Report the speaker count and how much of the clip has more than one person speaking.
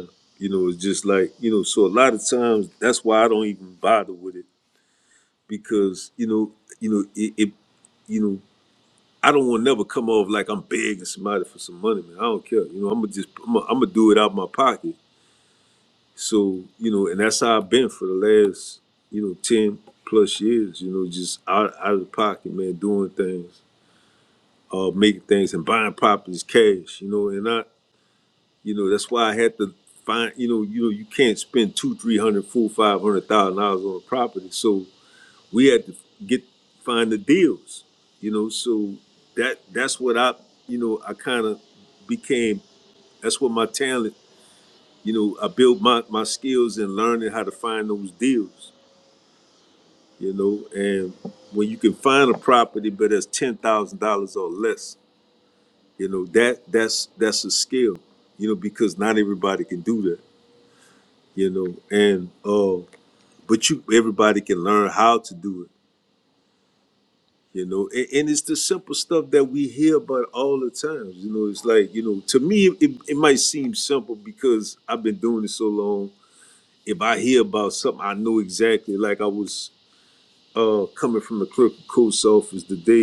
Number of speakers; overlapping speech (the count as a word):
one, no overlap